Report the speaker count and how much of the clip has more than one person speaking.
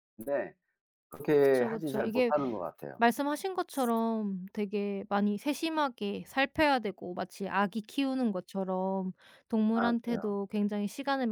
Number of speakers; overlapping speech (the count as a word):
two, about 13%